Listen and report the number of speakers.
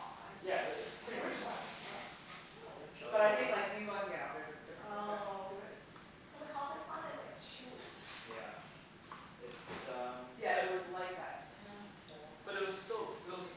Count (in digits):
3